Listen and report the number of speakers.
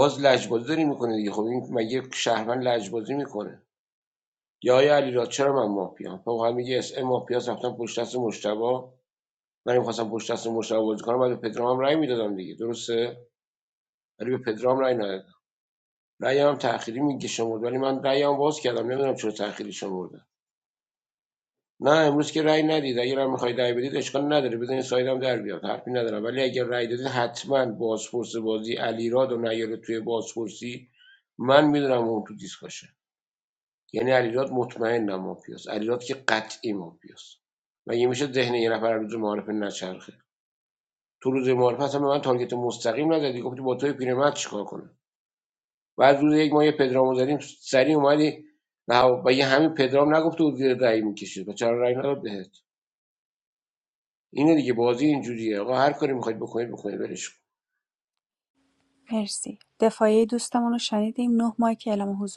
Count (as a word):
two